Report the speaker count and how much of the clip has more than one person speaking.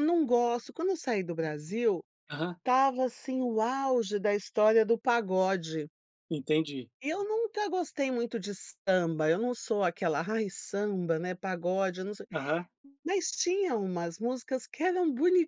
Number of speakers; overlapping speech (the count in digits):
2, no overlap